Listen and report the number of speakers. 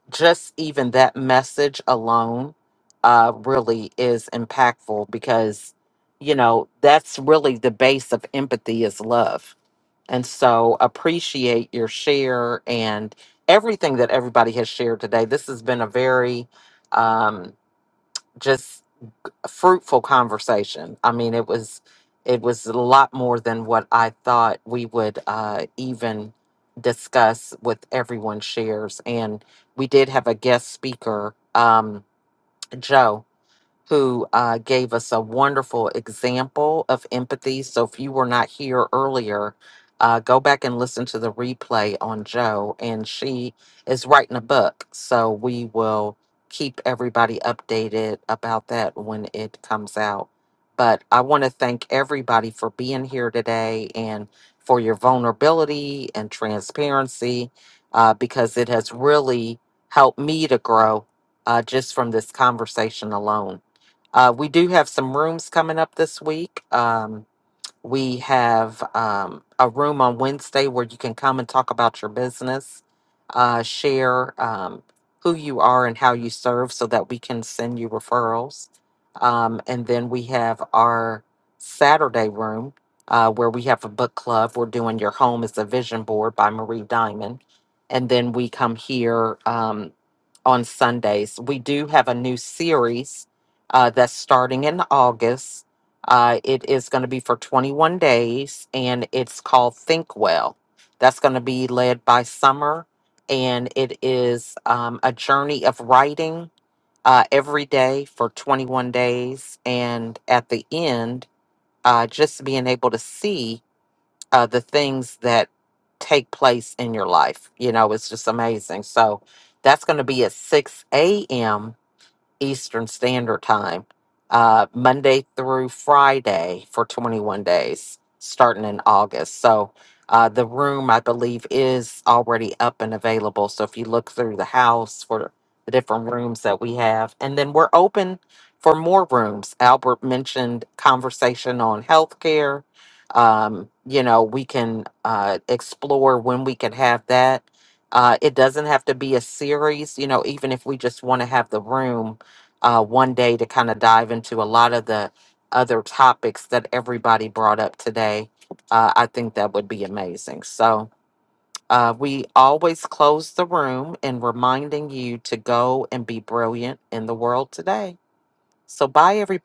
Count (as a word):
one